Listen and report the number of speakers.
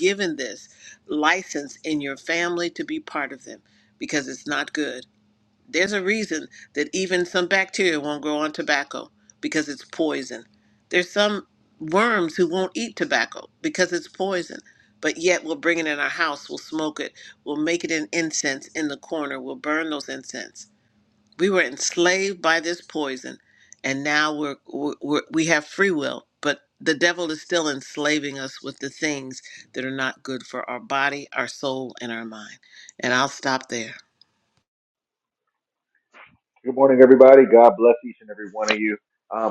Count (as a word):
two